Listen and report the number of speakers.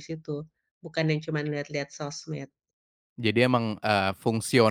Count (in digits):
2